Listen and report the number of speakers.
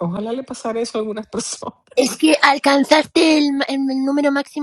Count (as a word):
two